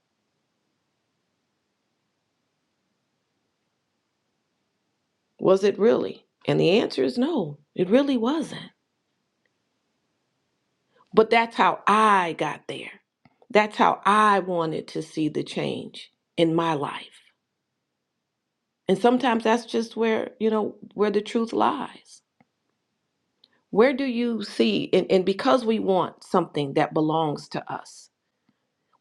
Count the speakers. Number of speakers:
1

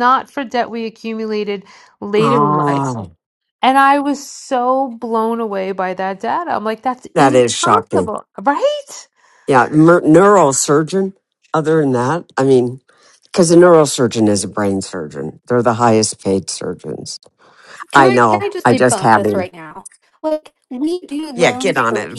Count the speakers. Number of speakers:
3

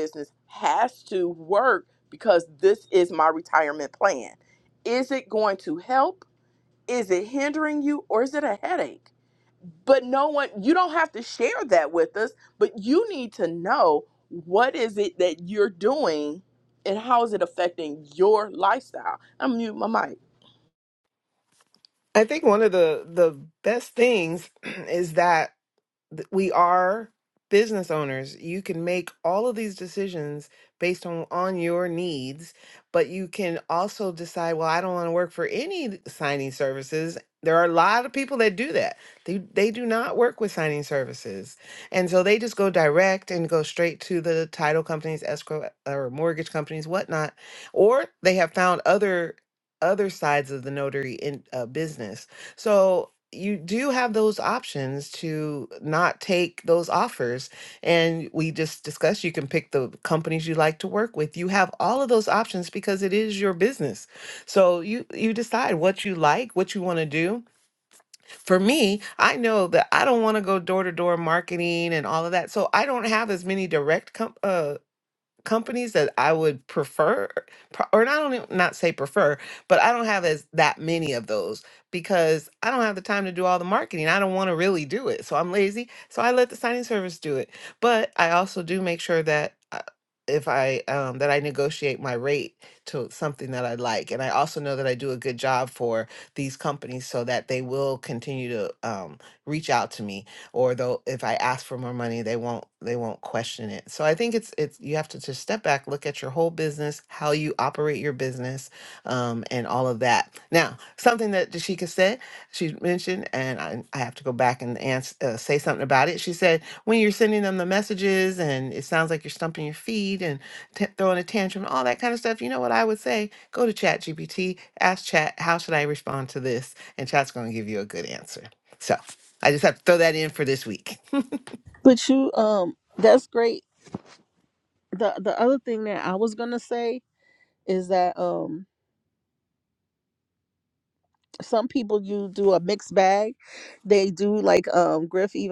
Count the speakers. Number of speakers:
3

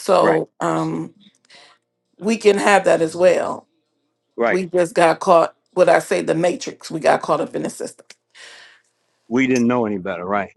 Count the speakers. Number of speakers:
2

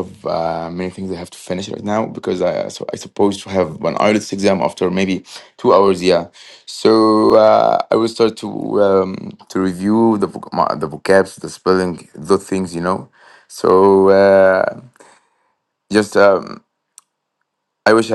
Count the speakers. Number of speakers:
1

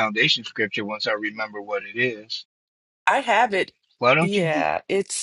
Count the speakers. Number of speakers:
2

